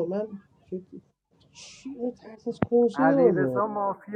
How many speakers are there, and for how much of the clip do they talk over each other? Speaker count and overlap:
2, about 16%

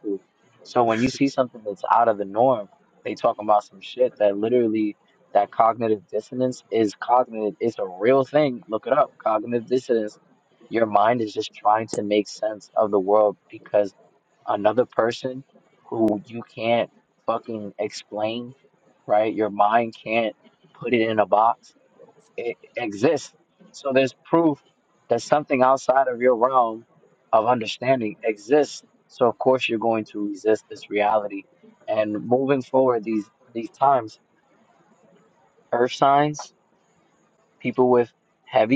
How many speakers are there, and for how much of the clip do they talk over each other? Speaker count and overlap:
1, no overlap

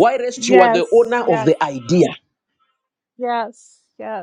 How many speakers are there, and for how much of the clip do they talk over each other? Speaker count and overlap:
2, about 16%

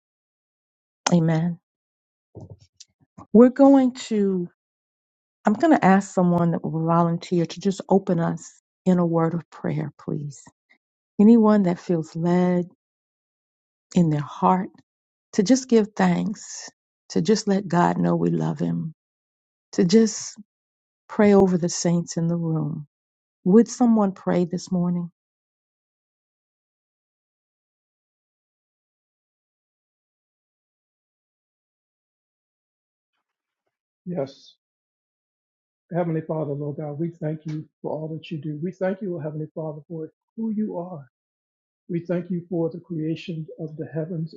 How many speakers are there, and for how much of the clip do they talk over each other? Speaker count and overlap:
2, no overlap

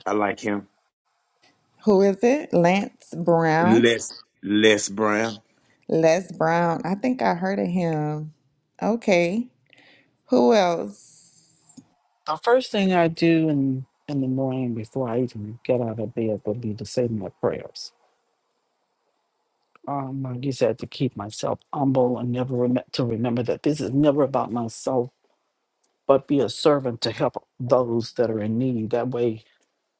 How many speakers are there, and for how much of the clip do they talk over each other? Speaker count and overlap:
3, about 1%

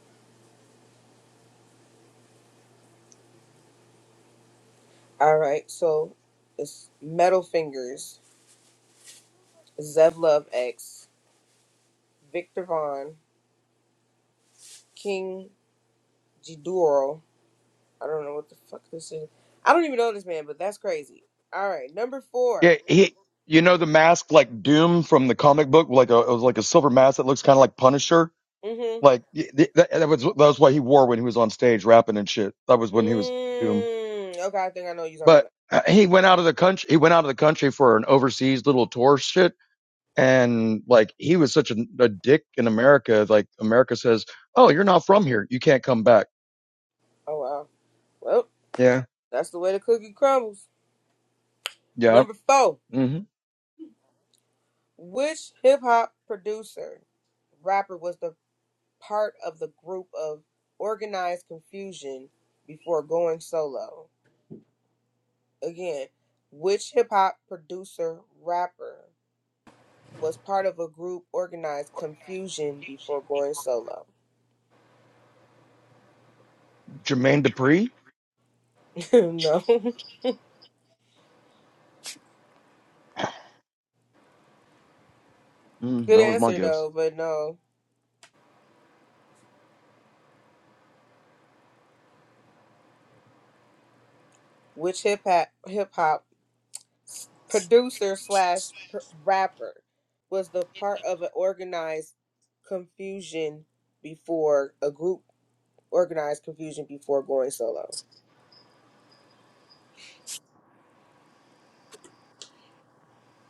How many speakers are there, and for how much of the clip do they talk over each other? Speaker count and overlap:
2, about 1%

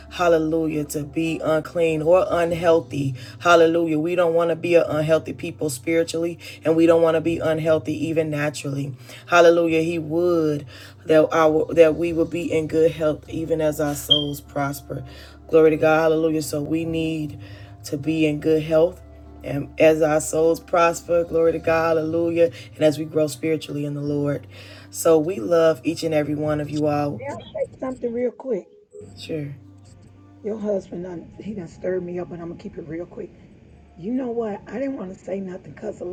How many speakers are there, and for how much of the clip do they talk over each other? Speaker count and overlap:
2, no overlap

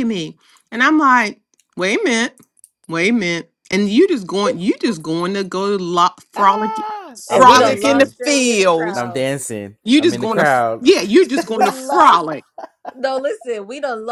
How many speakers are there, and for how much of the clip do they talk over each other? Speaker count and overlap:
3, about 27%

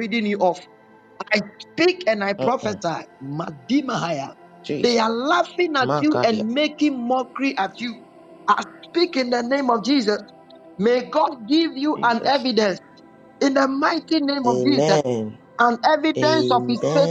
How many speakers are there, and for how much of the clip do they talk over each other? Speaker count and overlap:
2, about 19%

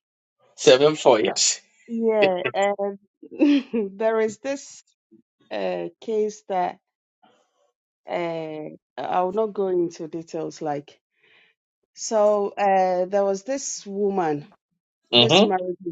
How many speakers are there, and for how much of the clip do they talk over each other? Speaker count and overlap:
2, about 3%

